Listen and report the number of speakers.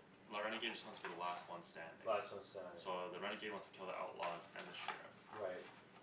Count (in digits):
2